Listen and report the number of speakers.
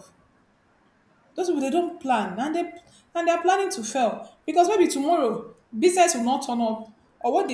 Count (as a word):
one